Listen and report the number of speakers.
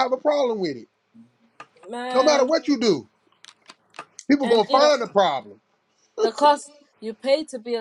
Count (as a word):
two